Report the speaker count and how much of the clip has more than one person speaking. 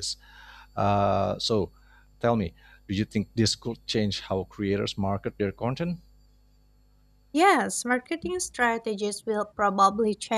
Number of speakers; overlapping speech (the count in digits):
2, no overlap